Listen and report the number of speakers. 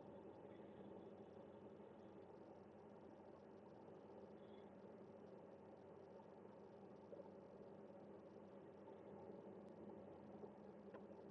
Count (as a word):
zero